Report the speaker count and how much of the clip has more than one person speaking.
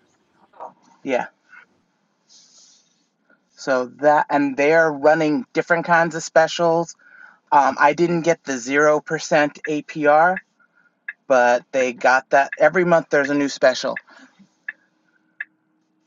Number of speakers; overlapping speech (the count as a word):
one, no overlap